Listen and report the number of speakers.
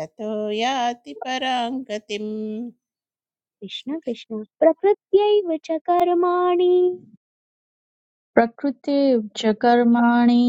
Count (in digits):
3